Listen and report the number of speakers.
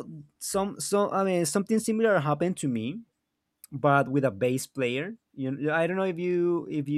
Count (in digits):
1